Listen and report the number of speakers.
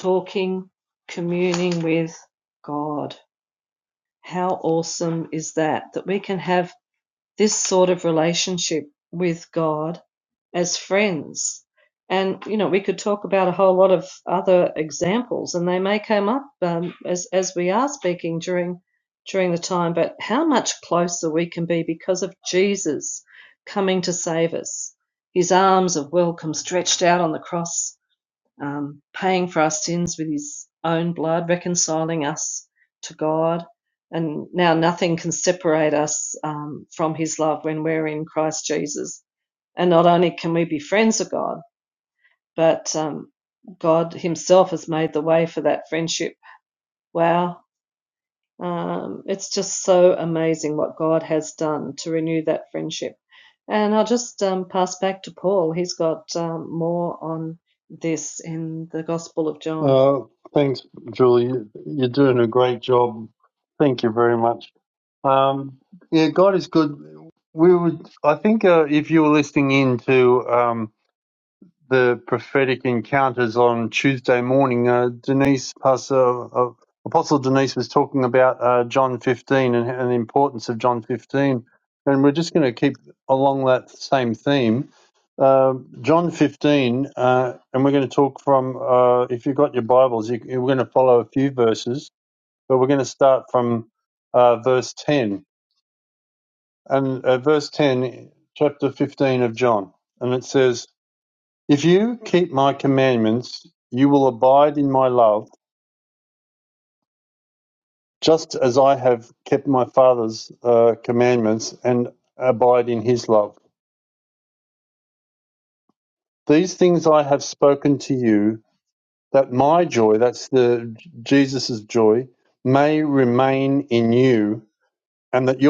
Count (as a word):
two